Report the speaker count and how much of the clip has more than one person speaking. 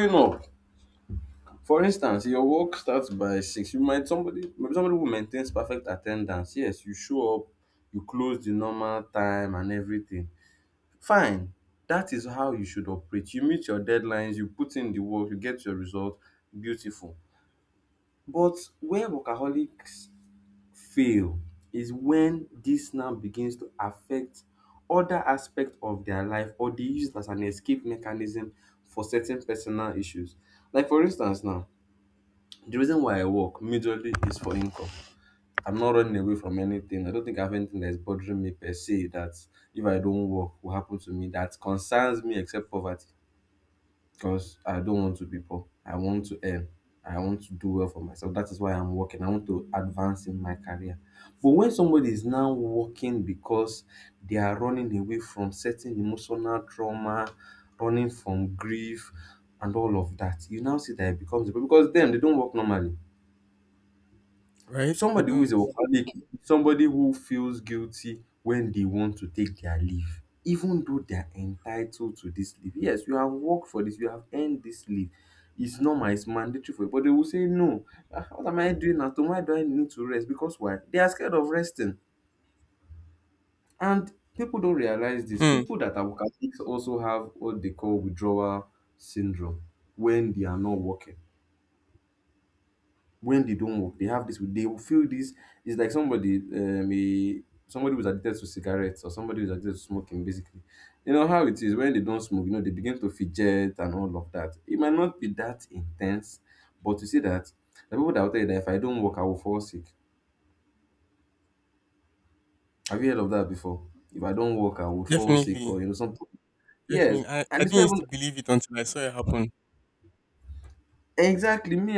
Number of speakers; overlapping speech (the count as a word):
two, about 2%